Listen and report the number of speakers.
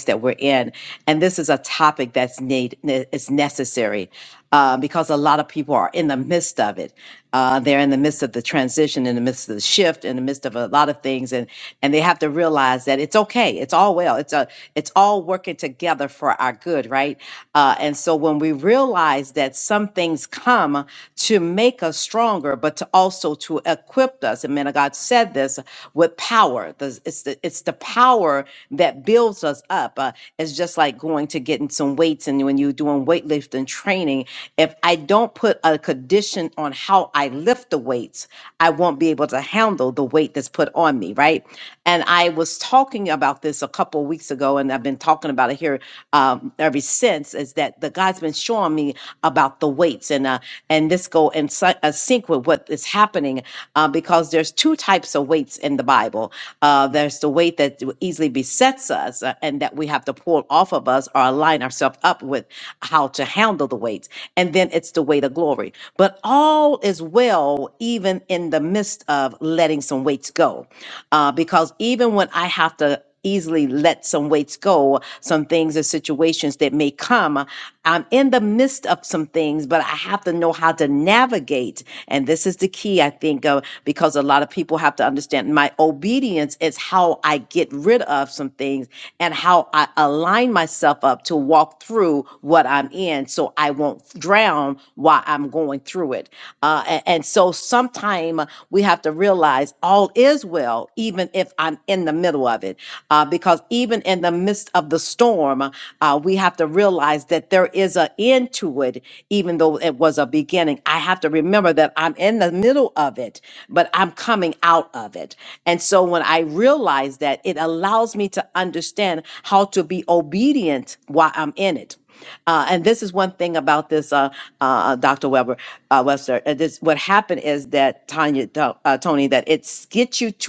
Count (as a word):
one